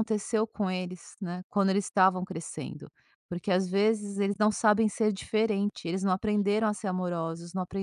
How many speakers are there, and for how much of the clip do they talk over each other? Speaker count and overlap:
1, no overlap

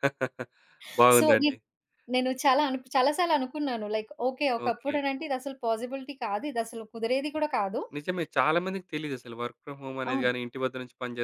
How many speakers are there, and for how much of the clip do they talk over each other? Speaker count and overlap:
2, about 9%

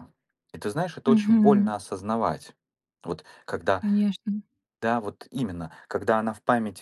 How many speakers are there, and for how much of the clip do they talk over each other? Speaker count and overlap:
2, about 11%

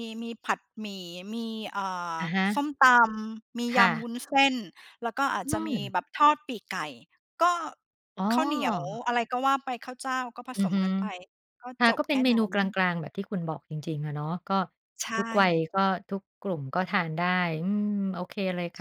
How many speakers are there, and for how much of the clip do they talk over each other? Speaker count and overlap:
2, about 11%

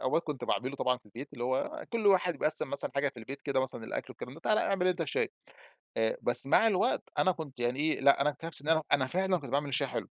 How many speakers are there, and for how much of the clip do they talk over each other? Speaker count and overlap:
1, no overlap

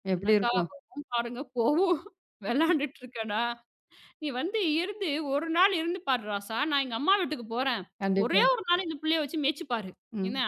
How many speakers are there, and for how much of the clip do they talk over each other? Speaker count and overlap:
2, about 9%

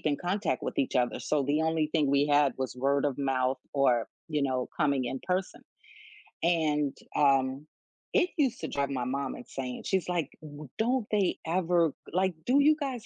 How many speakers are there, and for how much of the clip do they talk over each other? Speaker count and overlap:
1, no overlap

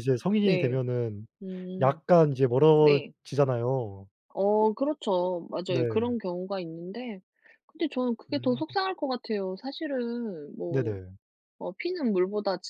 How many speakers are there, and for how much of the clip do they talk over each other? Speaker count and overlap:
2, about 12%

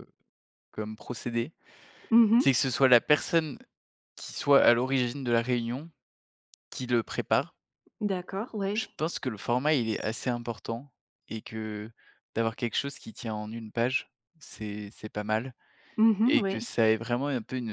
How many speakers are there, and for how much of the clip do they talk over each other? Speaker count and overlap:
2, about 3%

